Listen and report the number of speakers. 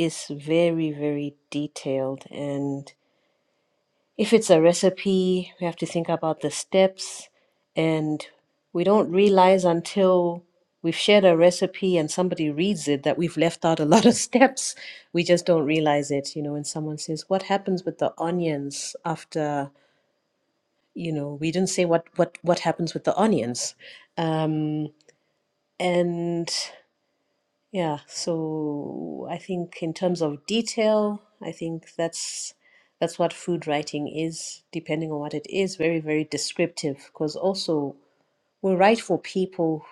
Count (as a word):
one